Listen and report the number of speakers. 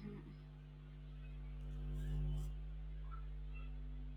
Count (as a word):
zero